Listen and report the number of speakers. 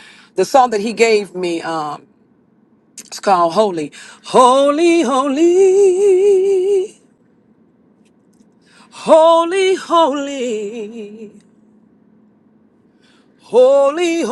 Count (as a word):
one